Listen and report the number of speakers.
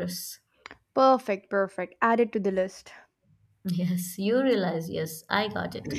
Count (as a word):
two